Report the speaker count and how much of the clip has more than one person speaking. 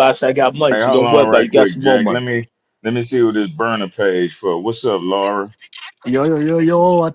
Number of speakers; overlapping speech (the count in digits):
3, about 21%